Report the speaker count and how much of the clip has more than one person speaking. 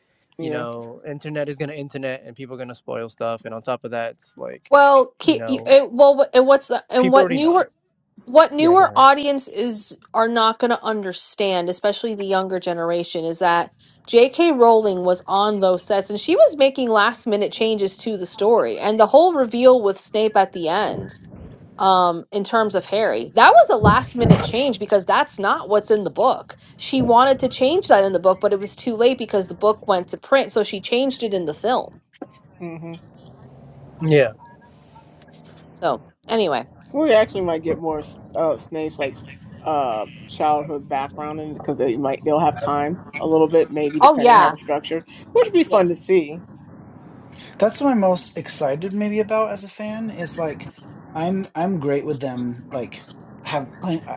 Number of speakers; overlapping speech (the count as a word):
four, about 4%